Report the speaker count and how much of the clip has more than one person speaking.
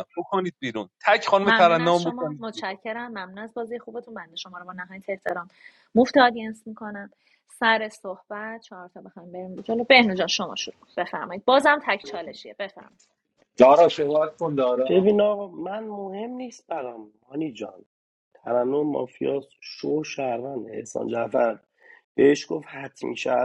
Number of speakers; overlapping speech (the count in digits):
4, about 6%